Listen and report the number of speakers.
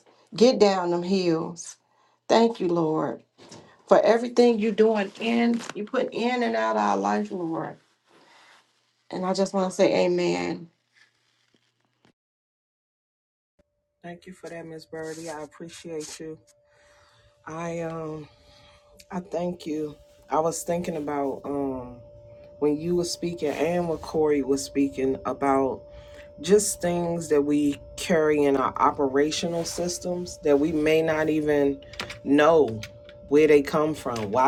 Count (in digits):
2